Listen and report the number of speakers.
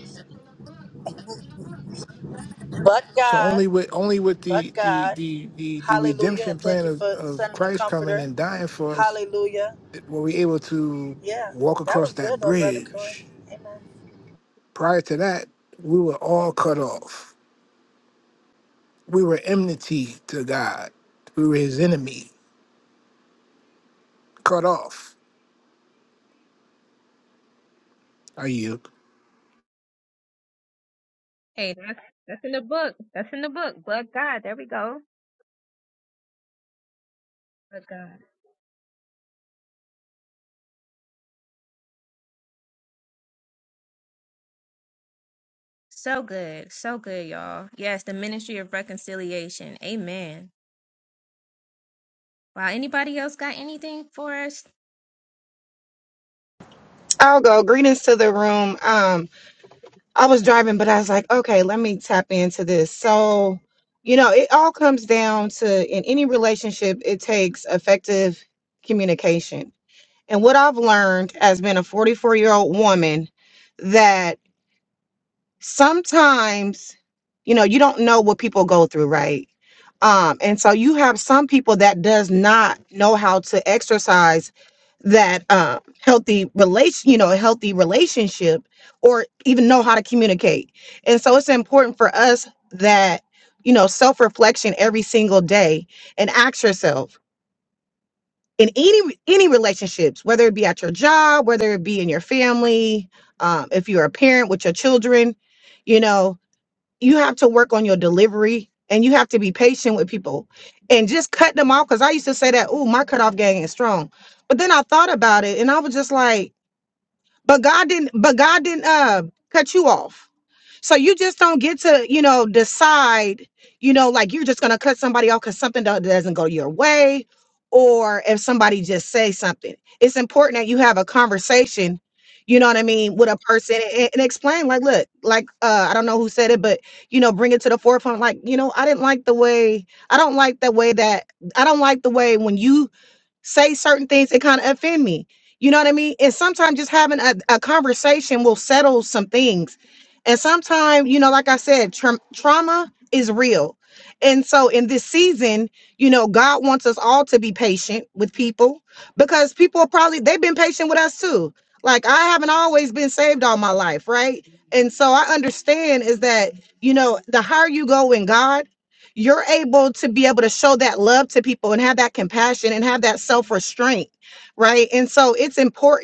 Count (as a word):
four